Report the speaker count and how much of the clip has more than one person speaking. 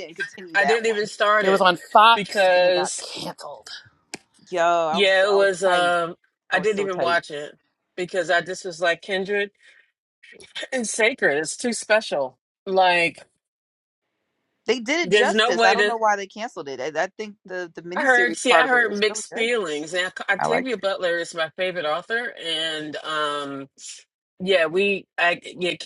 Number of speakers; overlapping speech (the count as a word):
three, about 22%